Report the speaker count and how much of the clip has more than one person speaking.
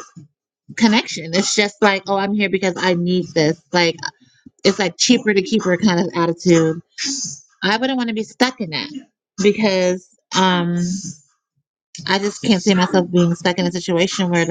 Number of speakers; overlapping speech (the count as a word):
one, no overlap